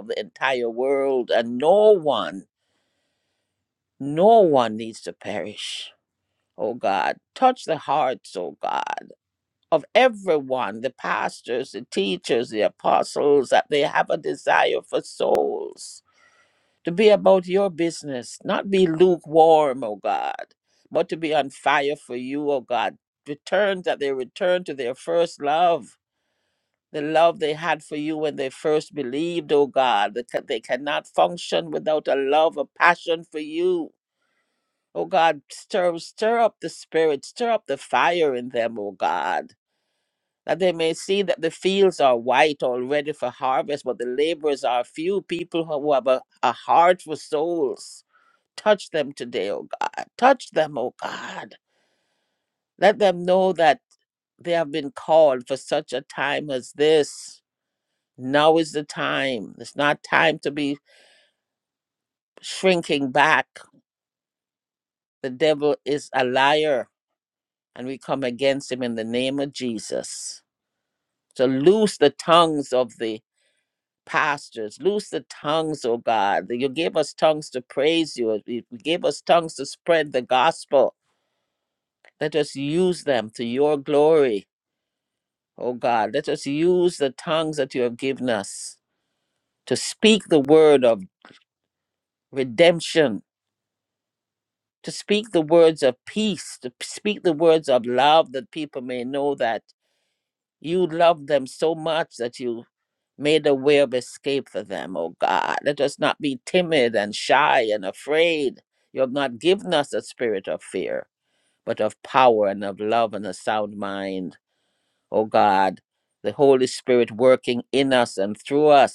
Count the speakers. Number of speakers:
1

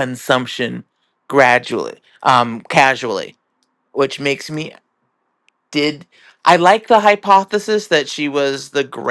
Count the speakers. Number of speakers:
1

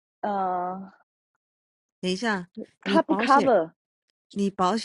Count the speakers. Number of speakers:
2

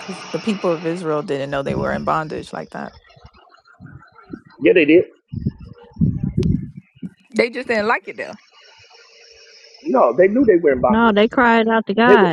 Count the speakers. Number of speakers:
3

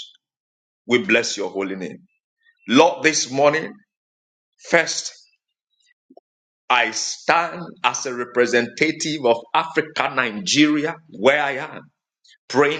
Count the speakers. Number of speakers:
1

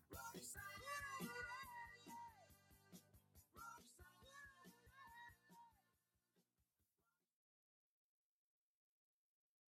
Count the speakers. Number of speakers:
0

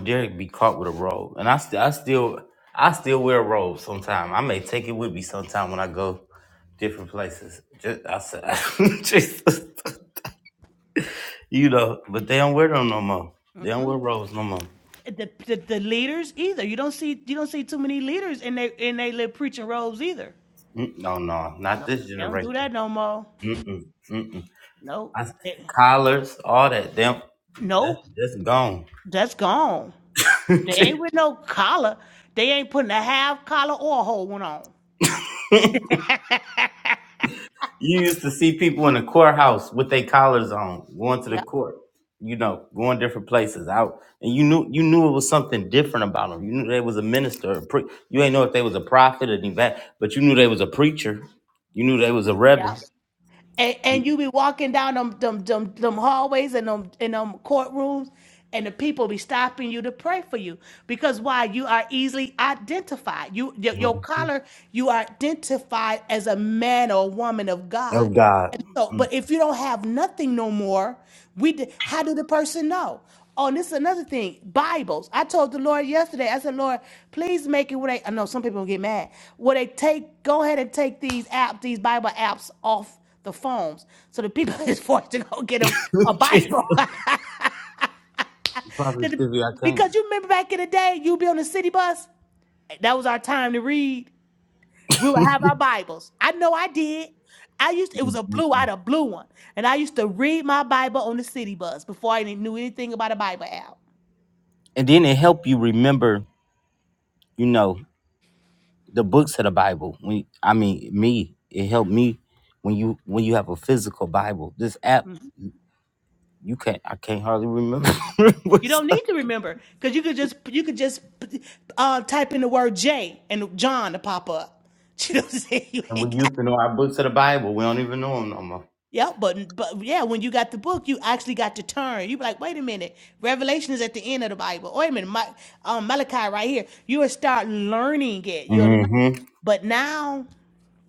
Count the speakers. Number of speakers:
2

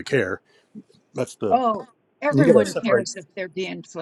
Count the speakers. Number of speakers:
2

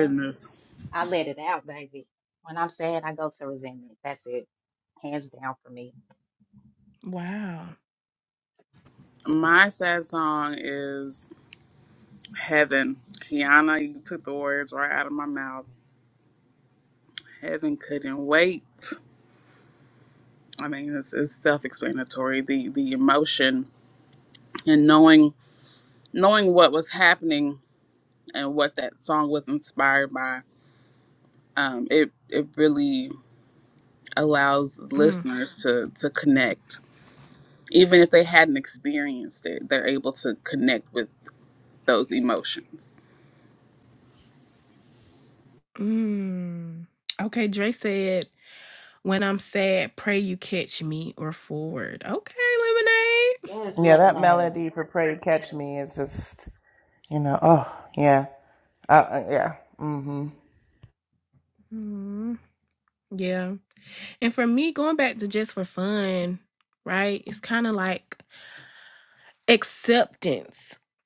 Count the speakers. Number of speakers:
4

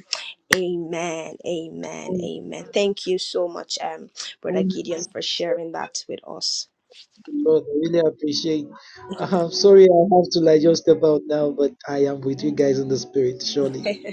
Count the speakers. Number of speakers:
2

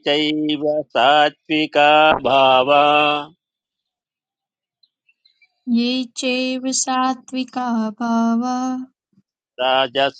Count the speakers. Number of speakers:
2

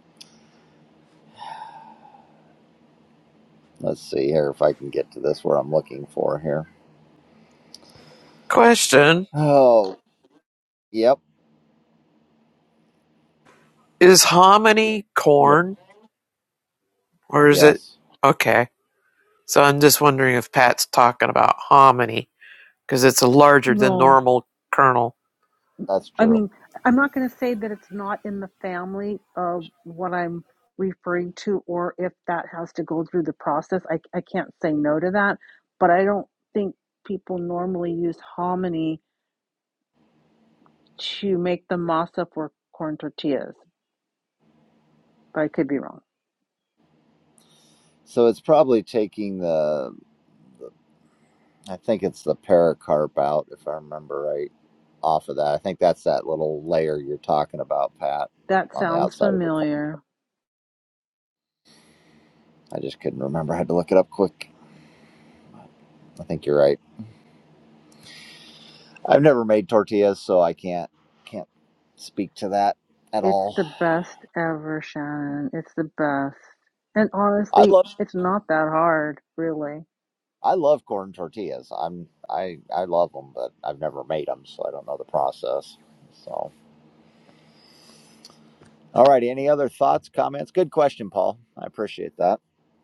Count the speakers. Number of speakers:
3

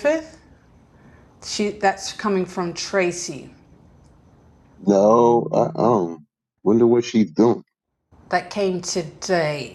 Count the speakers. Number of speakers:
2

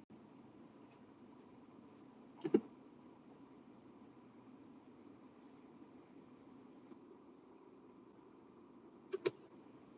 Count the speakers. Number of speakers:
0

